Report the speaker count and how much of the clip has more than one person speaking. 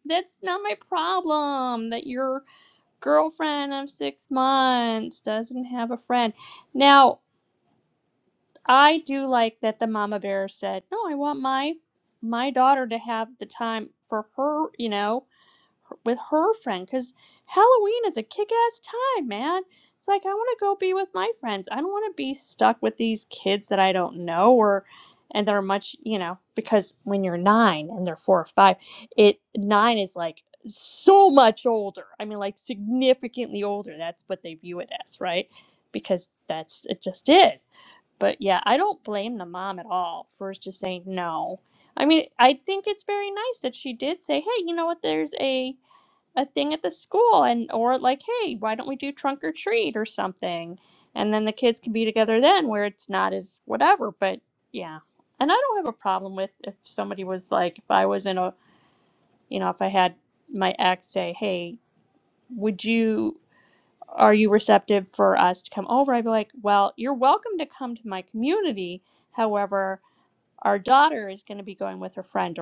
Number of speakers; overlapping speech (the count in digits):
1, no overlap